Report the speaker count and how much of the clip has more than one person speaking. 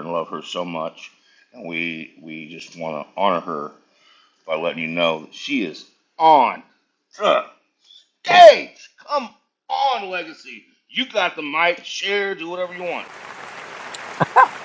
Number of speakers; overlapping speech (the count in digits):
1, no overlap